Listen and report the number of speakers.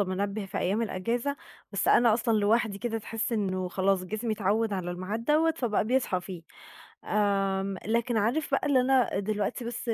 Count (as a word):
one